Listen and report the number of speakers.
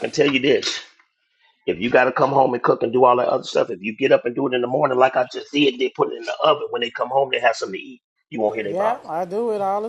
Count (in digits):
2